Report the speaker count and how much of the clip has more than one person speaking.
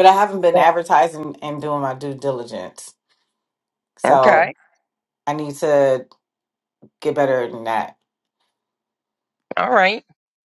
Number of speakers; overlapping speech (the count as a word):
two, about 5%